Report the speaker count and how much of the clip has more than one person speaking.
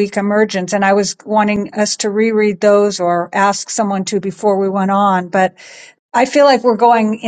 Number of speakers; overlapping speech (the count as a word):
one, no overlap